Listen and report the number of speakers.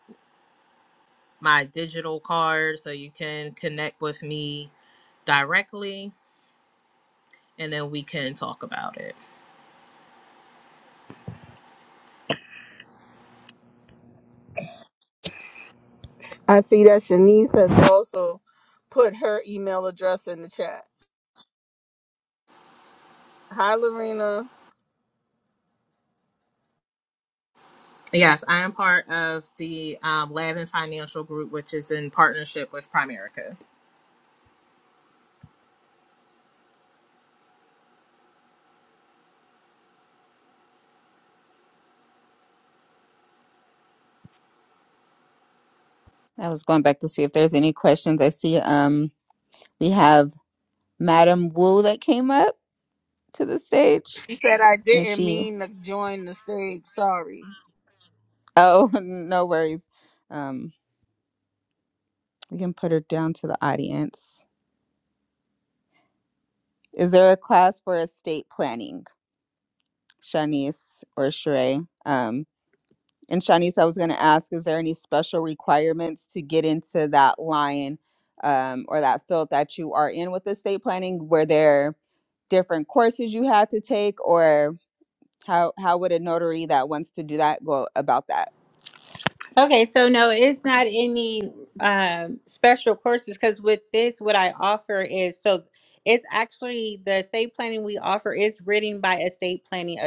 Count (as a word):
four